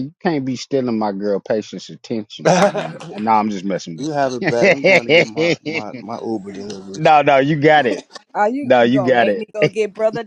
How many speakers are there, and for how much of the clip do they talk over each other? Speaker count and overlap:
three, about 22%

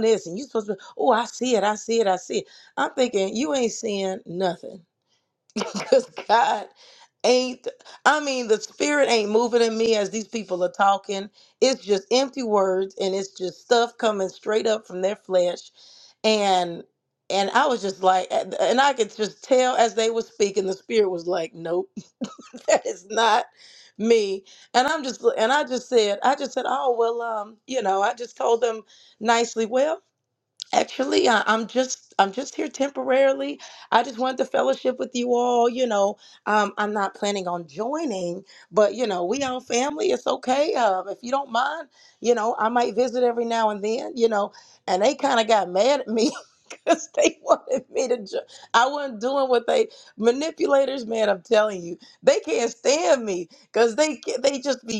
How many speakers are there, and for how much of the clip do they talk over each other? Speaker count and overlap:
one, no overlap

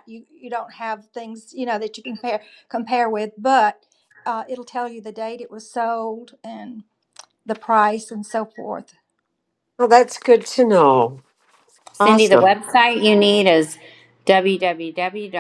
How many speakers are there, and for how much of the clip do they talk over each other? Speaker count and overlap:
three, about 4%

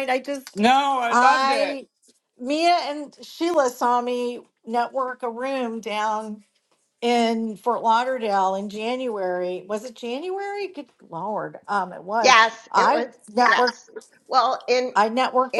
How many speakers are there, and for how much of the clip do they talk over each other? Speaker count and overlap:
three, about 10%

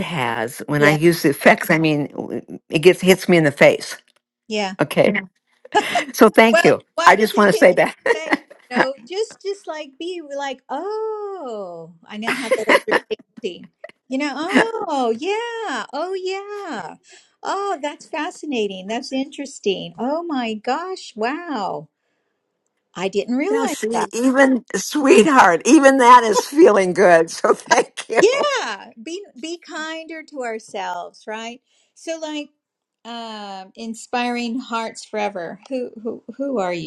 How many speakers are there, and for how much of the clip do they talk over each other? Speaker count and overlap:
two, about 6%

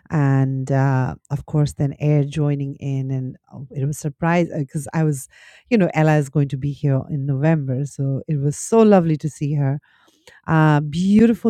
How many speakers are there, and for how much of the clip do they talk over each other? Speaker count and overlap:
one, no overlap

